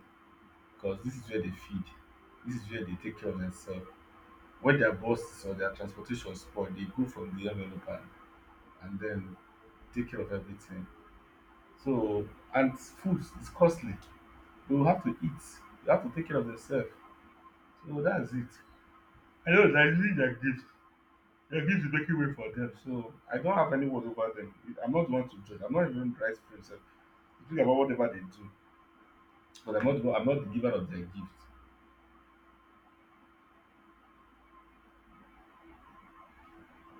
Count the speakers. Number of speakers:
1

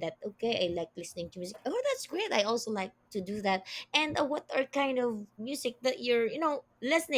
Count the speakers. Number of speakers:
1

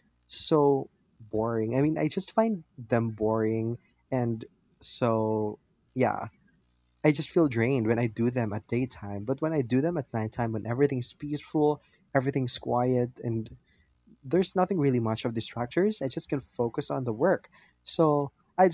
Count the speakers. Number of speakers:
1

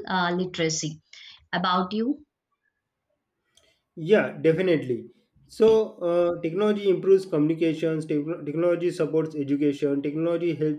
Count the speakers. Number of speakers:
2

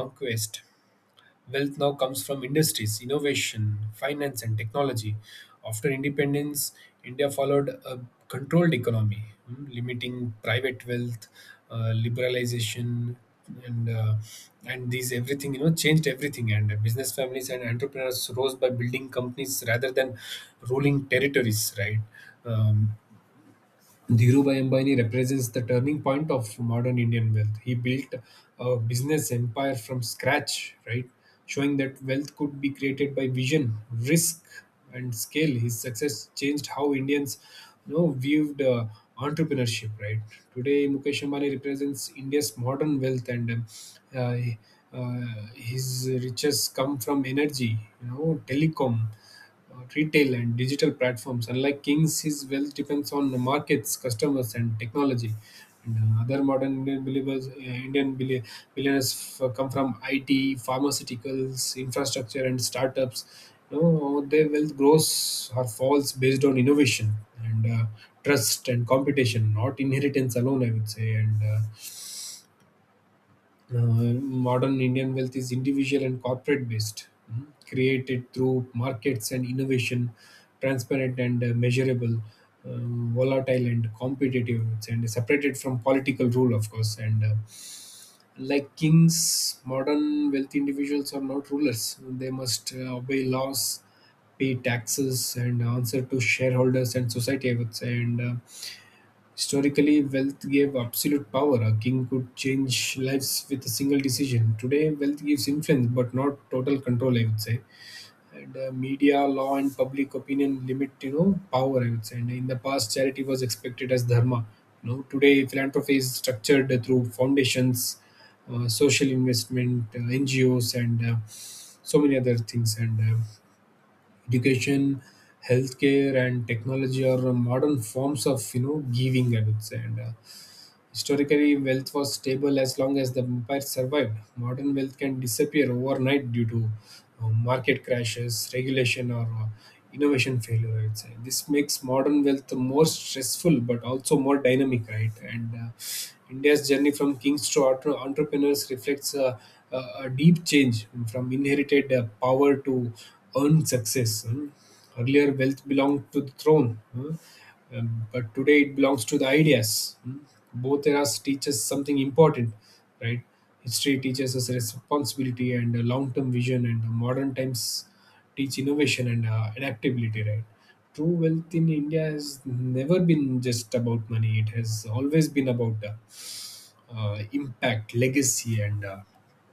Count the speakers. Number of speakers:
1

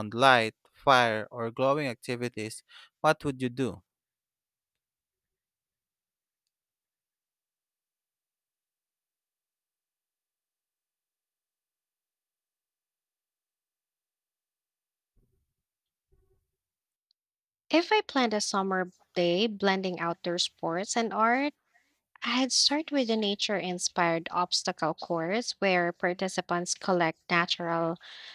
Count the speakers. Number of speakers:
2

